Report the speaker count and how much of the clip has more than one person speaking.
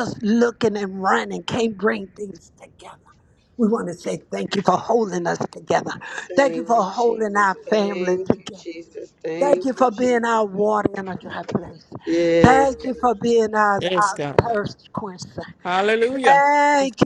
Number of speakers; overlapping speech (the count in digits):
3, about 26%